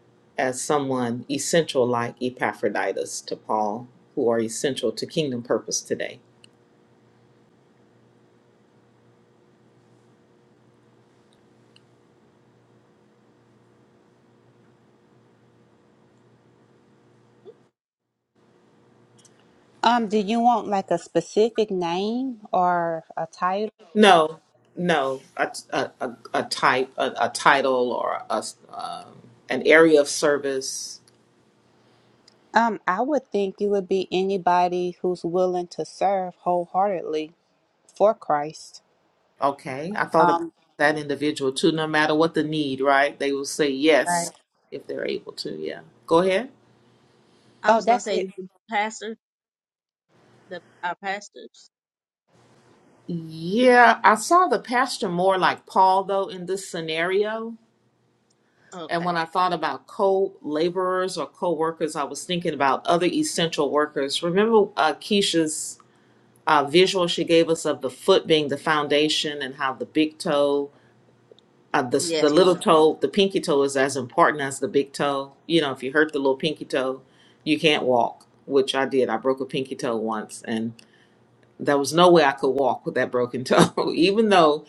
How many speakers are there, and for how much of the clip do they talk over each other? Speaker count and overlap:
3, about 2%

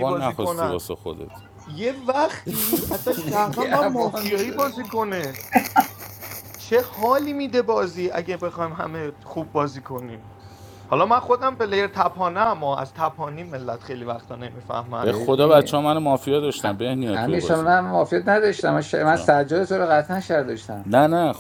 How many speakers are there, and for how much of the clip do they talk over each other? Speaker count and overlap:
3, about 20%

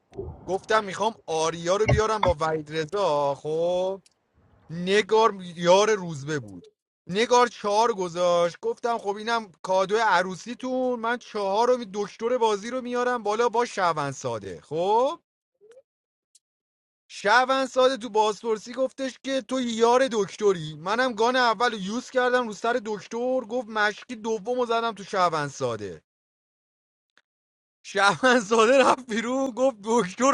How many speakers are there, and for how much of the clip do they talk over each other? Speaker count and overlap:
1, no overlap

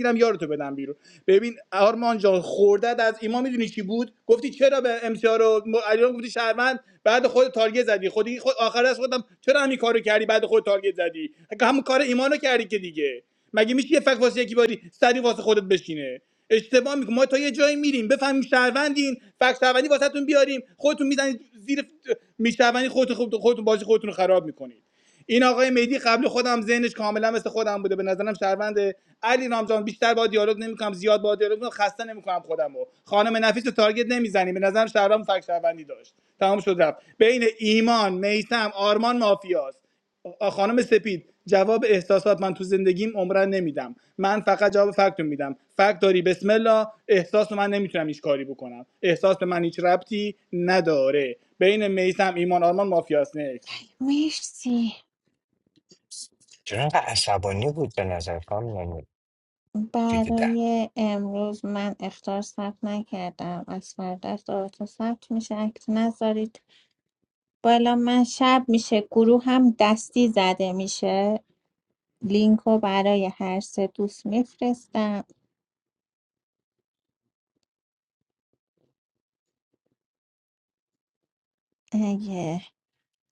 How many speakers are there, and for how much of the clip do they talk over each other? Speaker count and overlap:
3, about 1%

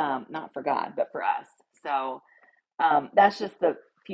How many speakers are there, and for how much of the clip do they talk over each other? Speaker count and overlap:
1, no overlap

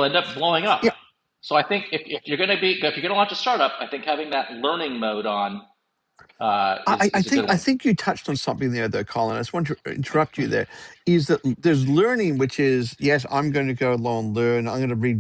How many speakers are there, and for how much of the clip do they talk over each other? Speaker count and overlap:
2, about 5%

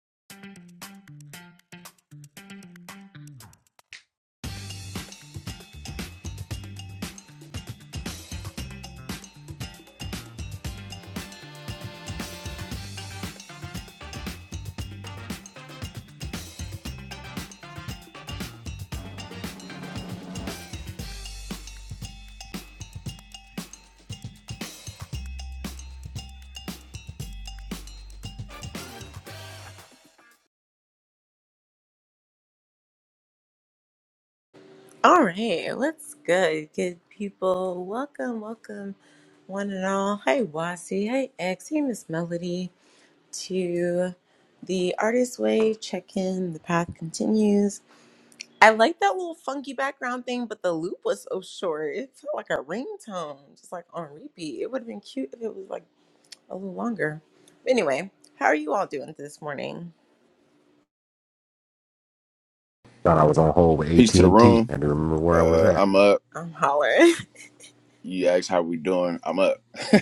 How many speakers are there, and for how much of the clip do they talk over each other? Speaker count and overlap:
3, about 2%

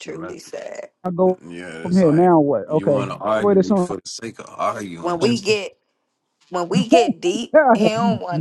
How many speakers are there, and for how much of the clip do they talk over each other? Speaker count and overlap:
3, about 29%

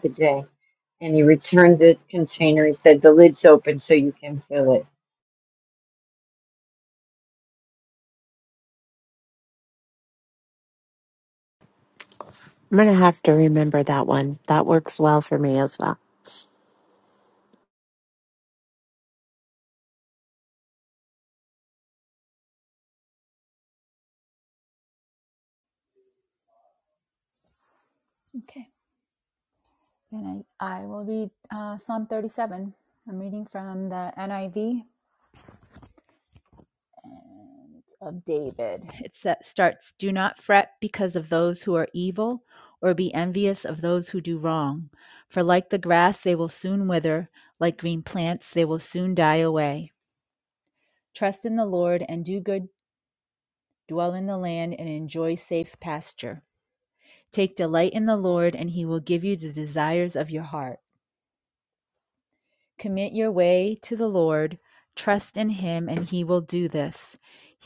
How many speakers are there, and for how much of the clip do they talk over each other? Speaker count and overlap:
3, no overlap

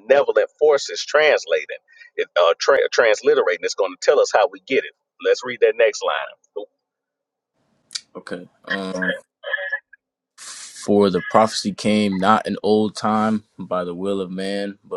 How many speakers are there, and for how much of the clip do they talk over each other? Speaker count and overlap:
2, no overlap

